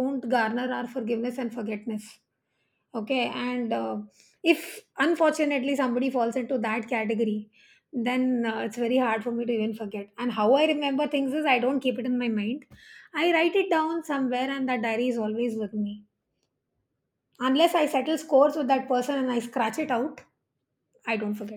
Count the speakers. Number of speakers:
1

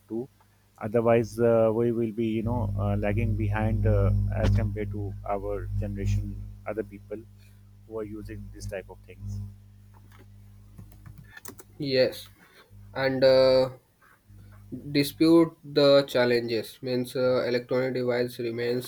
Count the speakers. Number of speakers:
2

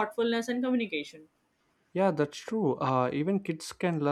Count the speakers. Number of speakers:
2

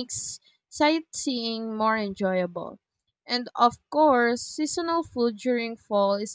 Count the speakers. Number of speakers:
1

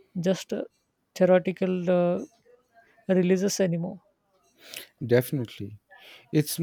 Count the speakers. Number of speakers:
2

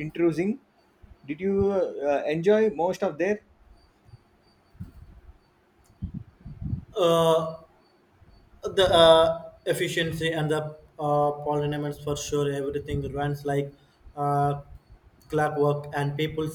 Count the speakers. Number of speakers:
2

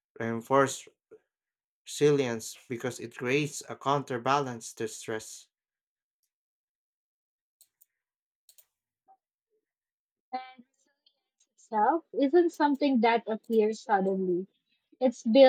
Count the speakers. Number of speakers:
2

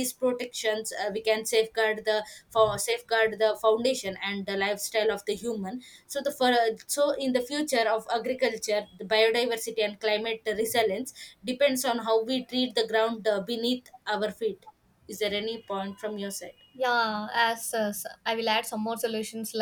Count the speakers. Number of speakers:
2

